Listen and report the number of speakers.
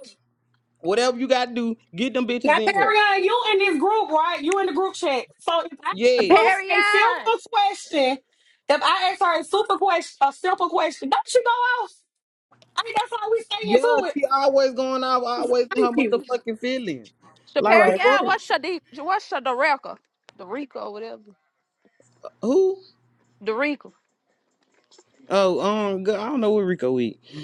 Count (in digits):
3